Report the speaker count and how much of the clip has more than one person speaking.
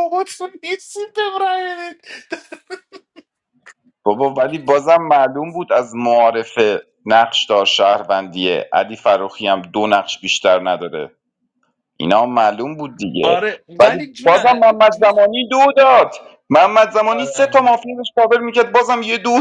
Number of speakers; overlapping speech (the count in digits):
2, about 7%